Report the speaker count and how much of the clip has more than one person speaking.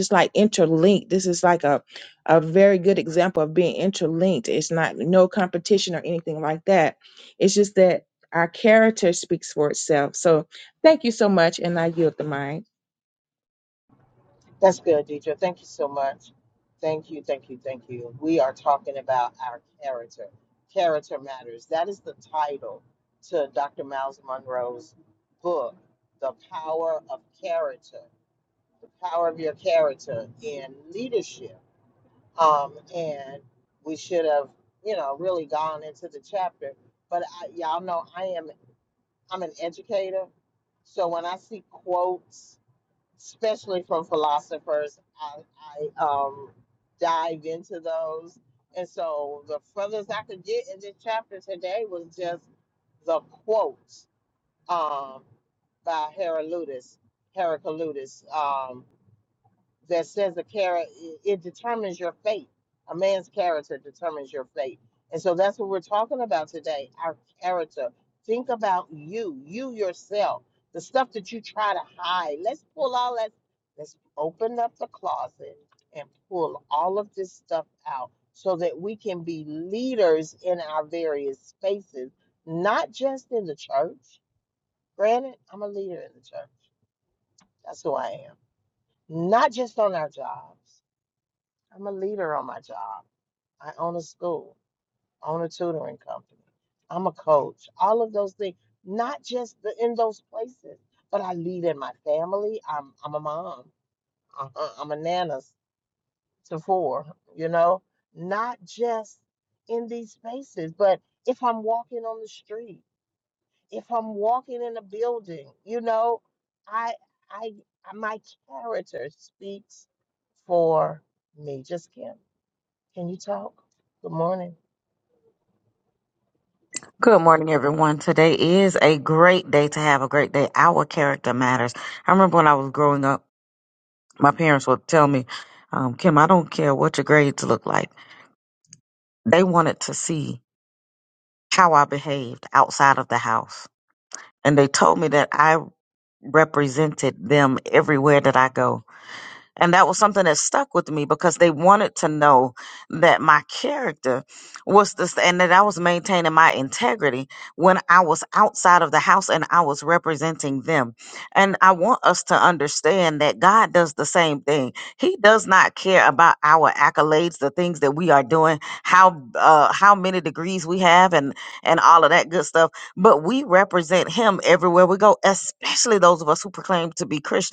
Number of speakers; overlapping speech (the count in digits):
3, no overlap